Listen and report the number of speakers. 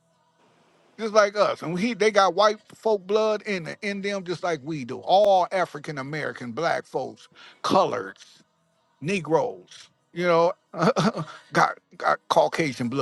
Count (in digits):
1